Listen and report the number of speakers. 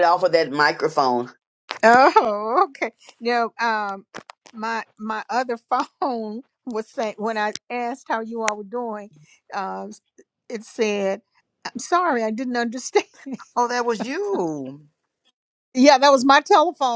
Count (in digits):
3